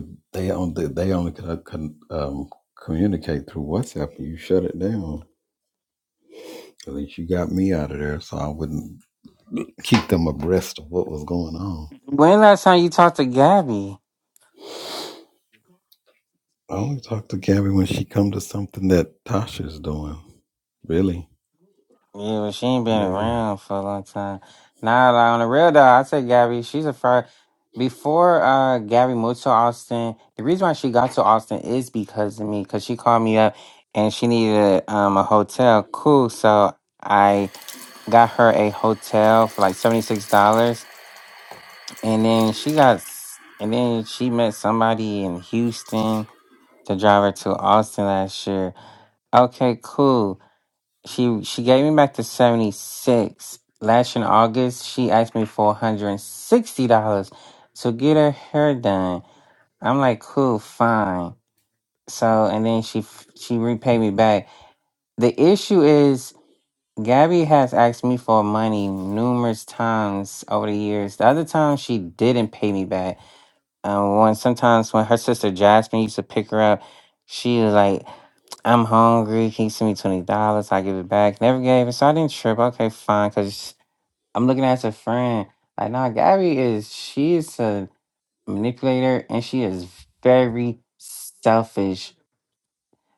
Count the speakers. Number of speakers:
2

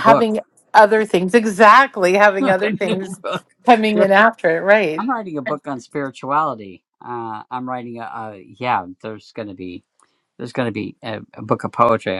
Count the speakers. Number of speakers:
2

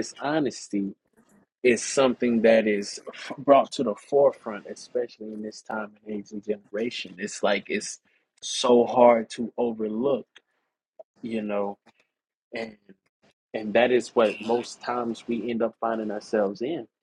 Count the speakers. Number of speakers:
1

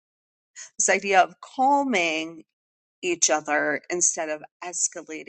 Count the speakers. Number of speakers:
1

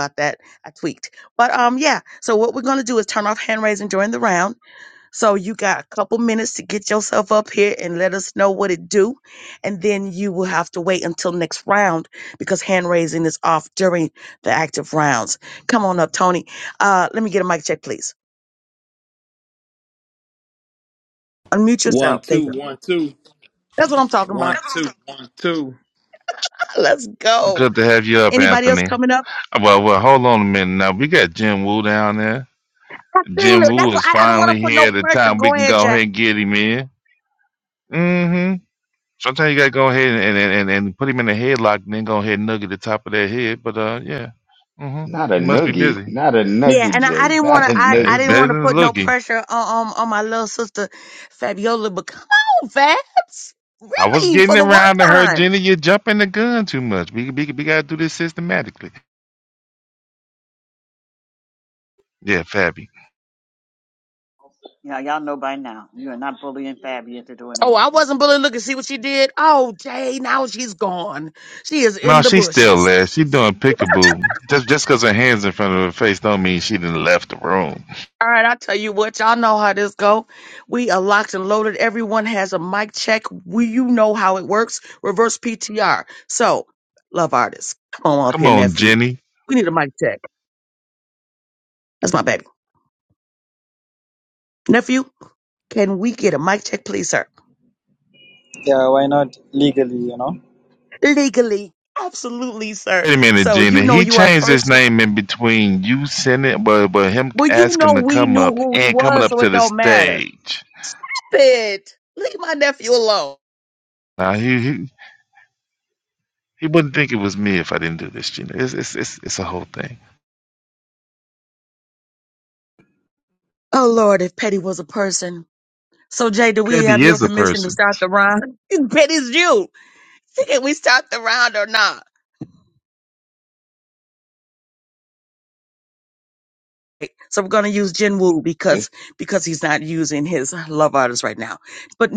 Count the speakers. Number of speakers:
6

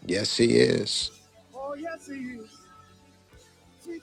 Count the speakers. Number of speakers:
2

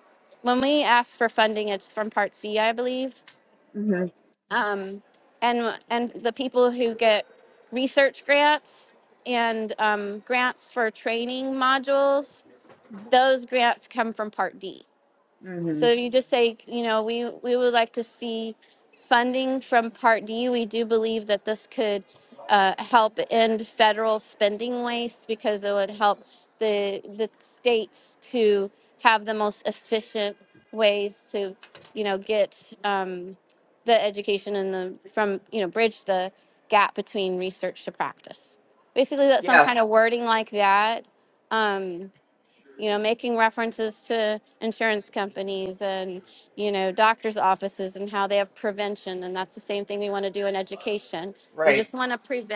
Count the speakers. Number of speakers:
2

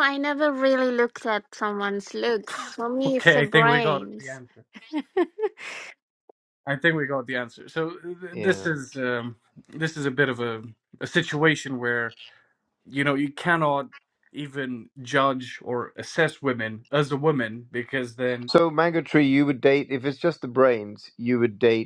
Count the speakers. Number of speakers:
3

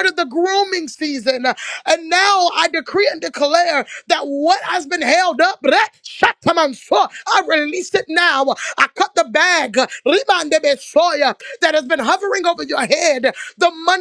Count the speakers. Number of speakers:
1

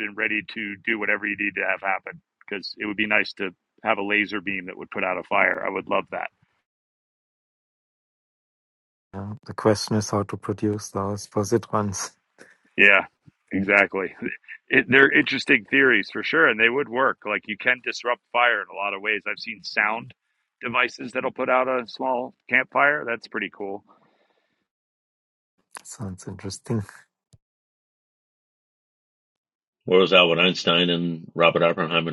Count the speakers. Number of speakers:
3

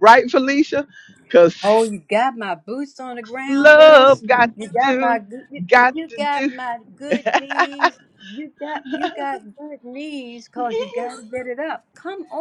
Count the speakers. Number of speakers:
2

